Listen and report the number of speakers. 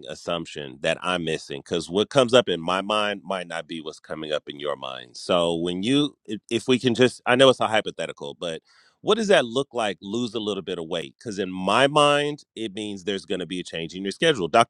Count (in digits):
1